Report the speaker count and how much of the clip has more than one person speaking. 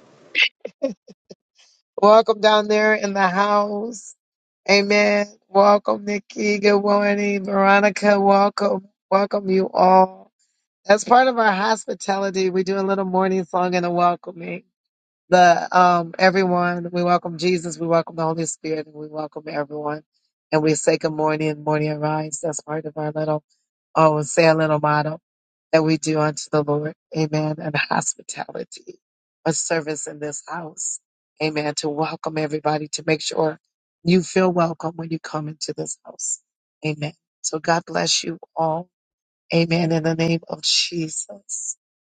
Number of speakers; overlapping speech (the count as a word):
one, no overlap